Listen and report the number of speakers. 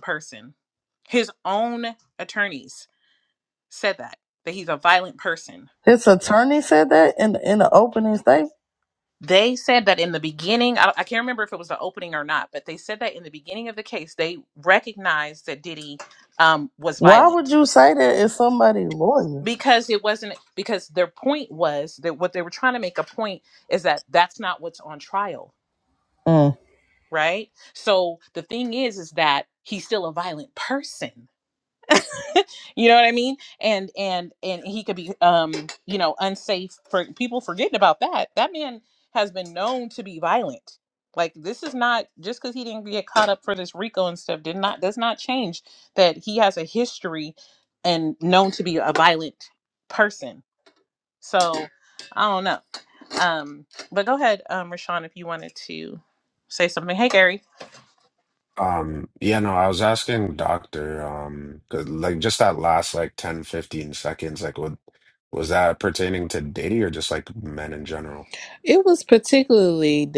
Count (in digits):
4